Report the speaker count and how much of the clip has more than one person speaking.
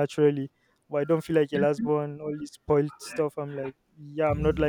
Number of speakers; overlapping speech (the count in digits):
1, no overlap